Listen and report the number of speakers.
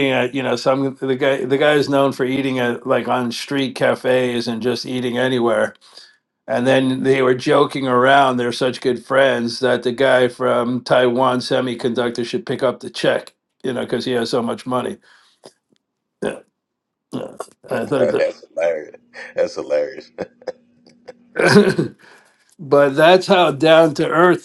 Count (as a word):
two